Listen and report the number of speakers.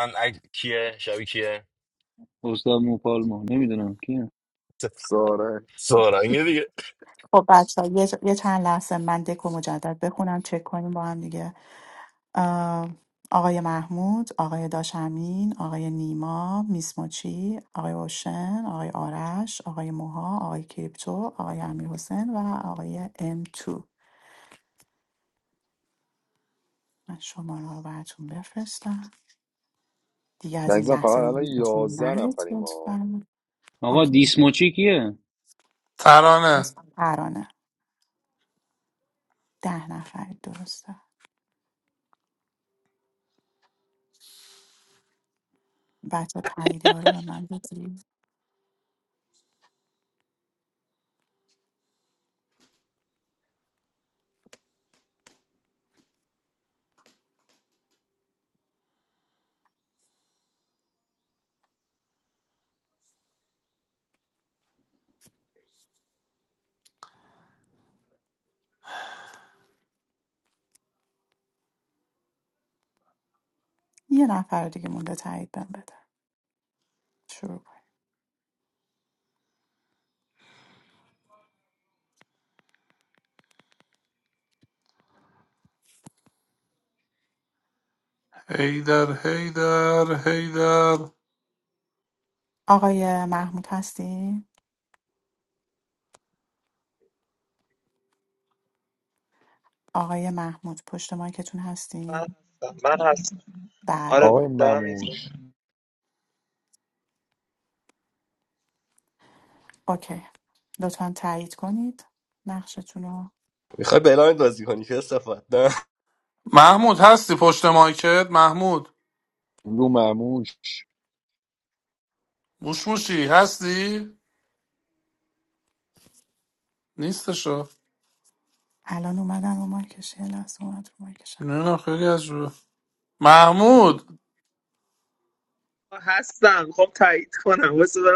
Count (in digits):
7